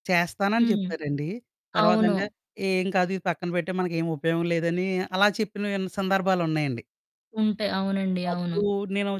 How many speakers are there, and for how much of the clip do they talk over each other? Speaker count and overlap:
2, about 12%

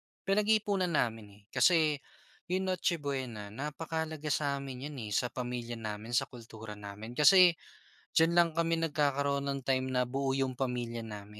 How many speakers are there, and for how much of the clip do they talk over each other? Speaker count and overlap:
1, no overlap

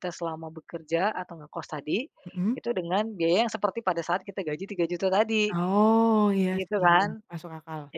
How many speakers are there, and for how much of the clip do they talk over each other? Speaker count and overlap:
2, about 6%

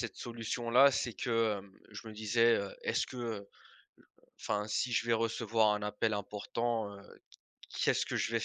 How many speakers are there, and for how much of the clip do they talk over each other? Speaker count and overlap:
1, no overlap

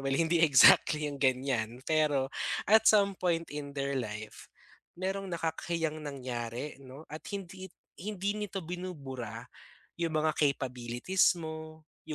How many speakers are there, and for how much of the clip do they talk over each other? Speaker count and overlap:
1, no overlap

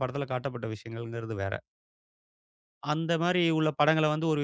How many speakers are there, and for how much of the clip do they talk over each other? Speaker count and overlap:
1, no overlap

